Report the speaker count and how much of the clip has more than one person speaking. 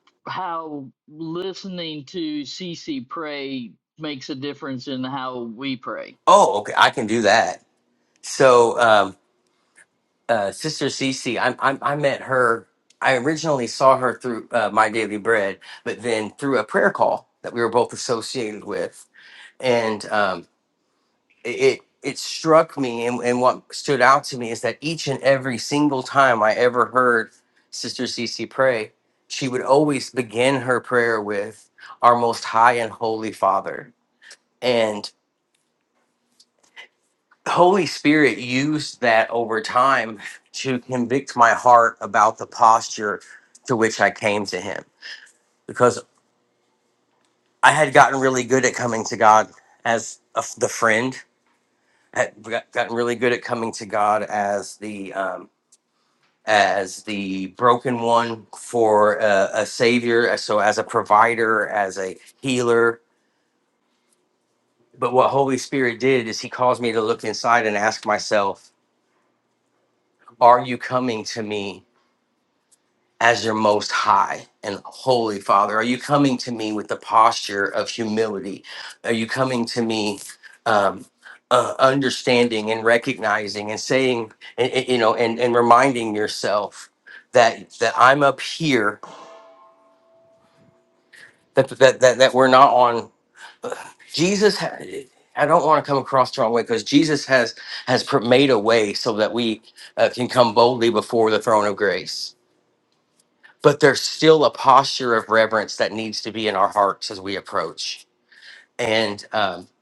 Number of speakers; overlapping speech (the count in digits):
2, no overlap